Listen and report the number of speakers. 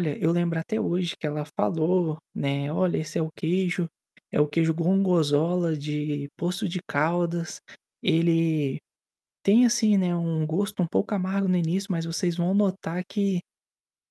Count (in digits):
1